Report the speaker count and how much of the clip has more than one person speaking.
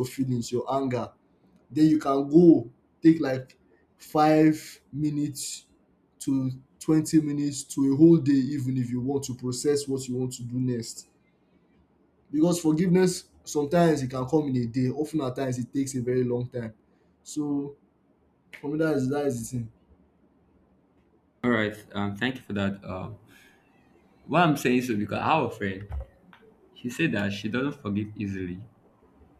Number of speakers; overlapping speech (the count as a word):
two, no overlap